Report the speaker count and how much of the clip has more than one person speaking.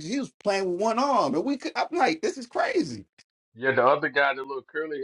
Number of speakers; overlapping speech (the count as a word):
two, no overlap